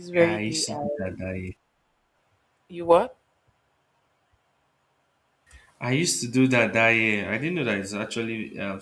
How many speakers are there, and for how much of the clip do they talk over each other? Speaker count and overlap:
2, about 9%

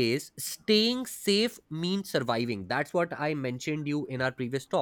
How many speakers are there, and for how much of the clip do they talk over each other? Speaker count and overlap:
1, no overlap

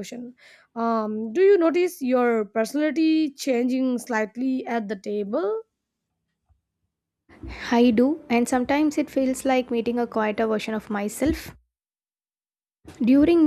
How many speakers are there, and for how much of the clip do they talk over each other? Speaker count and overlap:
2, no overlap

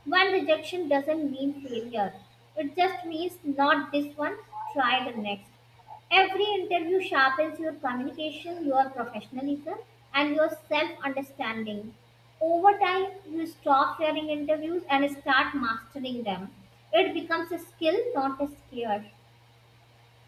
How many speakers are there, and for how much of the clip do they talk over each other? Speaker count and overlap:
1, no overlap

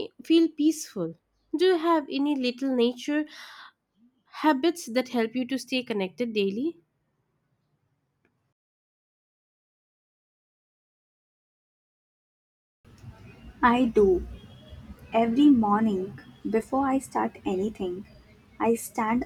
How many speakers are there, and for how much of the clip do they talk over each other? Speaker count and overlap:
2, no overlap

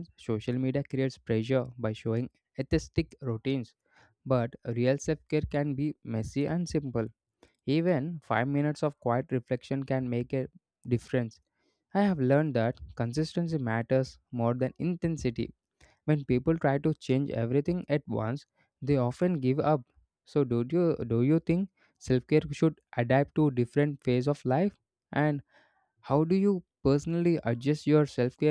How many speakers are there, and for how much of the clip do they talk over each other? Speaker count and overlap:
1, no overlap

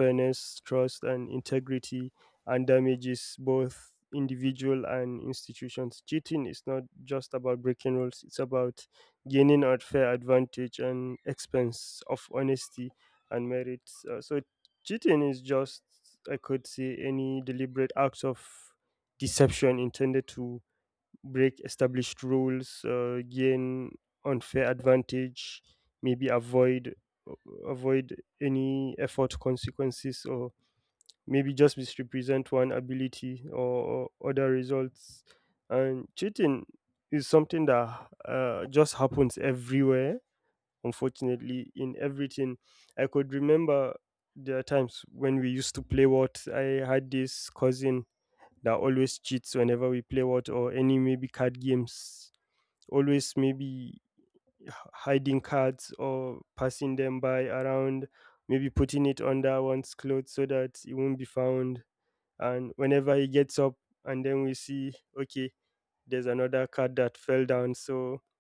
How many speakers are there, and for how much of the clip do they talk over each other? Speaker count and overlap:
1, no overlap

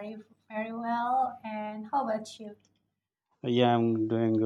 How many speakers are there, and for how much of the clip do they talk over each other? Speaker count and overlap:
2, no overlap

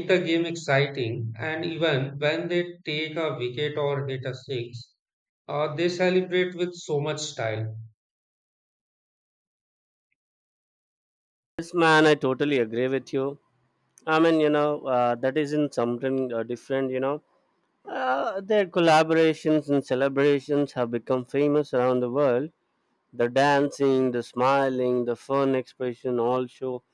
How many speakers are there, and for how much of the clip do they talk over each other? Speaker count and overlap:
2, no overlap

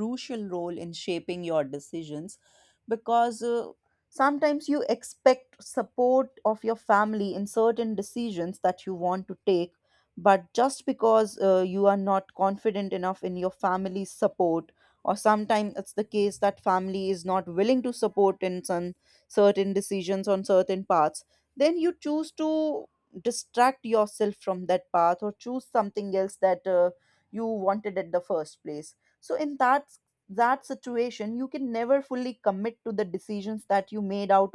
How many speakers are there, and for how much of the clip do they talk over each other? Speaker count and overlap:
1, no overlap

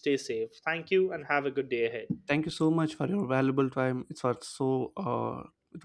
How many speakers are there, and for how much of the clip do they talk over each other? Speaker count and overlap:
2, no overlap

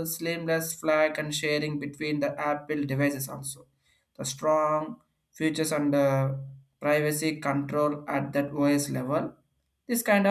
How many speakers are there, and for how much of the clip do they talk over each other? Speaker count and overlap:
1, no overlap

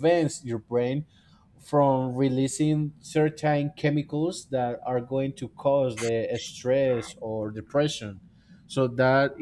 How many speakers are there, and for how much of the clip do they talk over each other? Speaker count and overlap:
1, no overlap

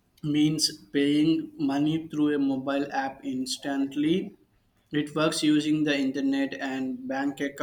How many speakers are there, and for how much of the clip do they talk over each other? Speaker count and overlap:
1, no overlap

